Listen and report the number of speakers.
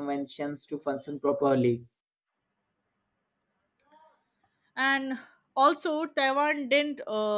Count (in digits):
2